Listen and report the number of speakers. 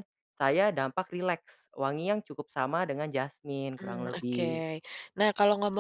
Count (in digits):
2